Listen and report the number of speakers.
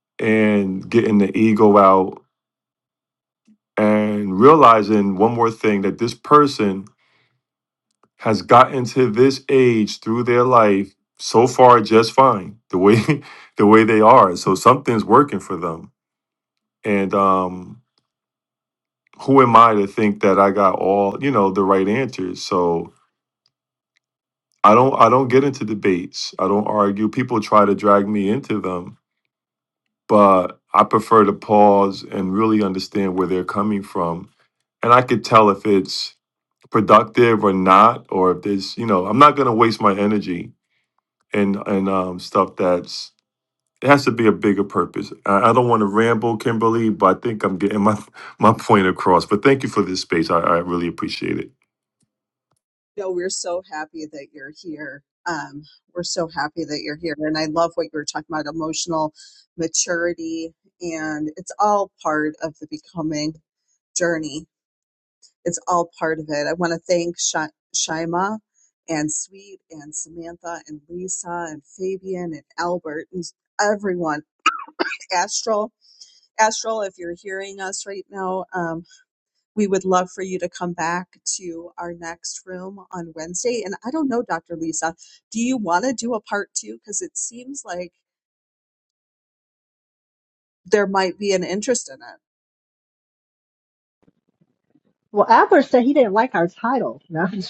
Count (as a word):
three